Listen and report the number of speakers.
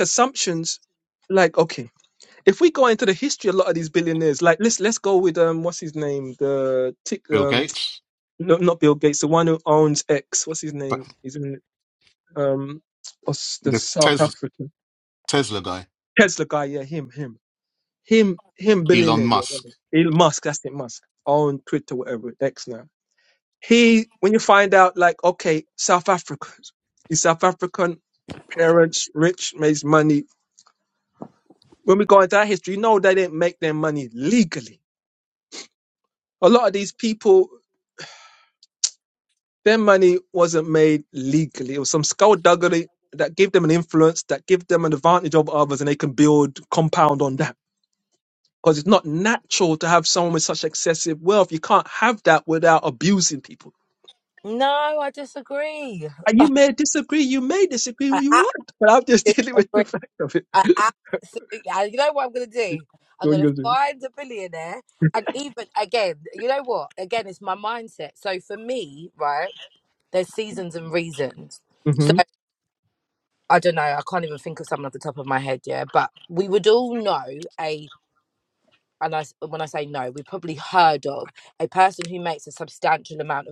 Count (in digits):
3